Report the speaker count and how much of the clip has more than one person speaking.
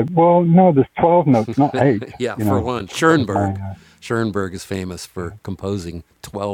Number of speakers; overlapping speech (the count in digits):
2, about 19%